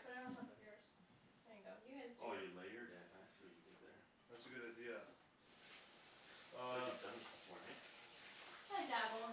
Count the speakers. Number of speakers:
3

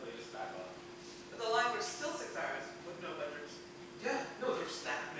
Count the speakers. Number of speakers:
2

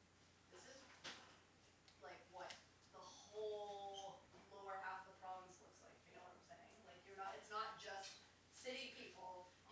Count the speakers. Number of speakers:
1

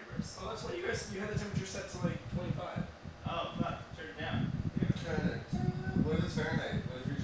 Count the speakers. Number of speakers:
3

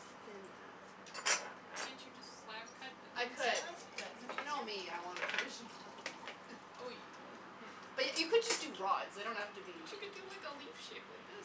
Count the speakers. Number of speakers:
2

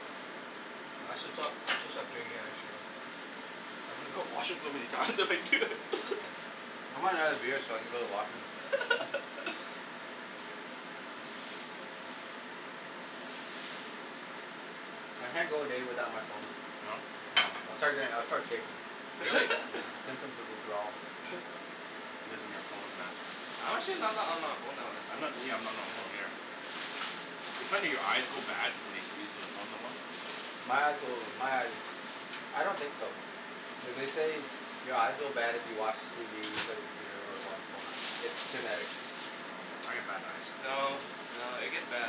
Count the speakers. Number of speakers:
3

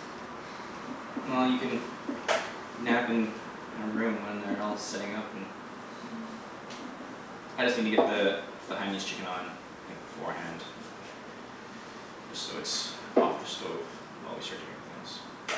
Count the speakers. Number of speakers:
1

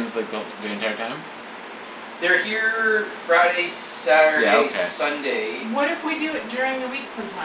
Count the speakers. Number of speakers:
3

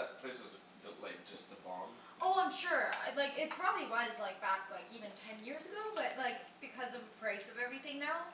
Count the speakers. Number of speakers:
2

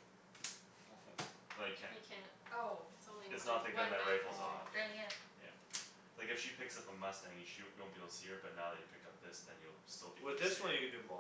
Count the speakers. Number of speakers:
4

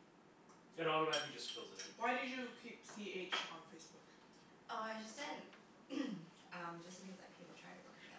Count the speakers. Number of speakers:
3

